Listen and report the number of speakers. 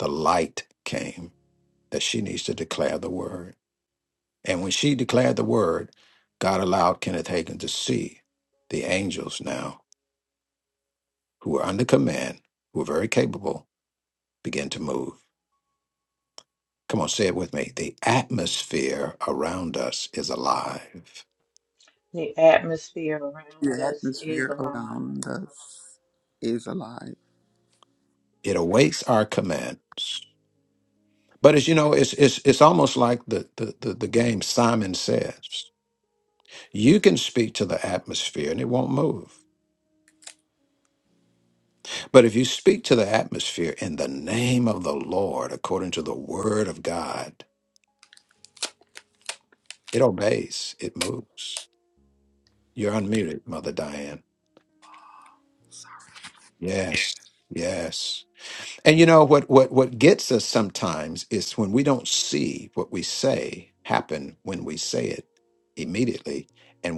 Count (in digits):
3